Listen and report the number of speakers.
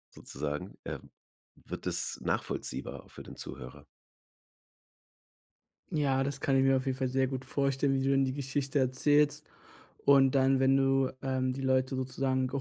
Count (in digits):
2